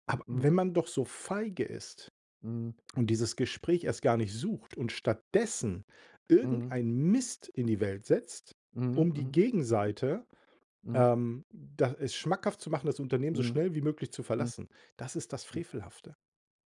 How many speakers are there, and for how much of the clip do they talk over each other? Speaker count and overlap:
two, about 8%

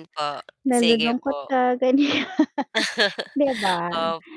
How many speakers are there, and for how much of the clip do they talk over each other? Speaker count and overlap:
two, about 17%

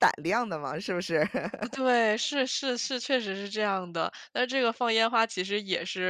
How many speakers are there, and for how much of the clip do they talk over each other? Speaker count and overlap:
two, no overlap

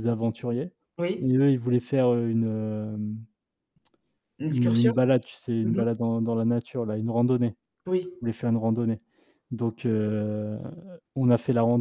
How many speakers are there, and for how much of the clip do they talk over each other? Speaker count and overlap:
two, about 7%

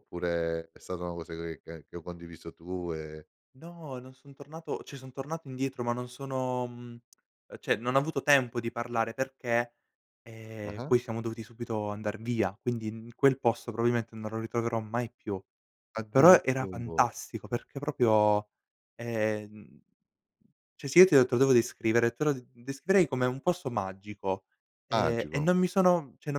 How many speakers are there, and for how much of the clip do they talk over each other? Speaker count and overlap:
two, about 5%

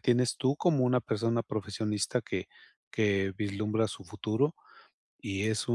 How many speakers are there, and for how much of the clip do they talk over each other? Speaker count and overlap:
one, no overlap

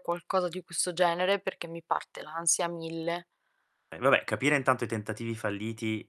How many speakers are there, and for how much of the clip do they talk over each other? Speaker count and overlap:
two, no overlap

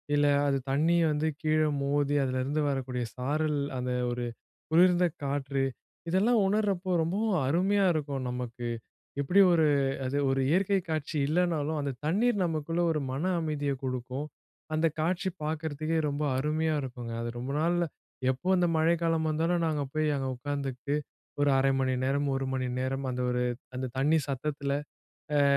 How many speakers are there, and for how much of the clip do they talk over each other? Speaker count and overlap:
one, no overlap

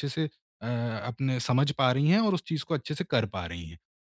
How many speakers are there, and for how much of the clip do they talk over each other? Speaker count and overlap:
one, no overlap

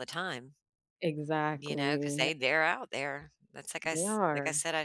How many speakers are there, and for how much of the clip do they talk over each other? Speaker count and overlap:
two, about 23%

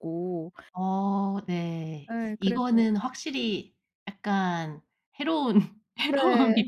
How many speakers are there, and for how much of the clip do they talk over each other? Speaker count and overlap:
two, about 16%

